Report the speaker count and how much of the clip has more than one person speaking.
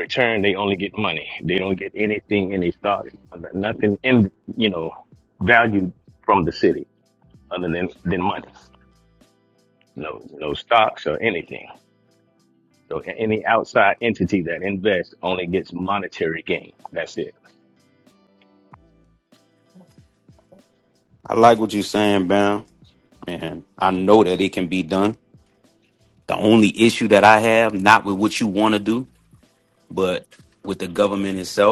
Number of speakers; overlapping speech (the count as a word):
two, no overlap